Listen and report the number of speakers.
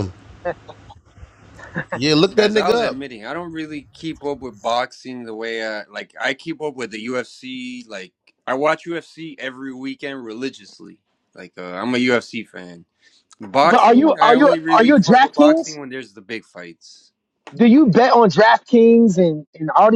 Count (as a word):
three